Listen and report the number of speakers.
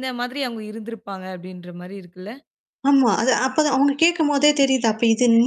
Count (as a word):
two